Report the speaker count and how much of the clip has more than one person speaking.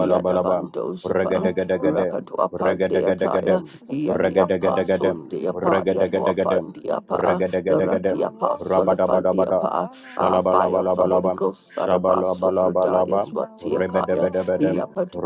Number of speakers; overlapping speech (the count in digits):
2, about 63%